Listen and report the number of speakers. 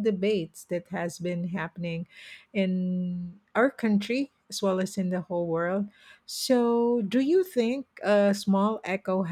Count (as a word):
one